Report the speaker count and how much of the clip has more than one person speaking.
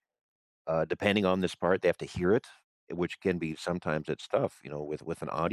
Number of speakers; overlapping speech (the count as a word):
one, no overlap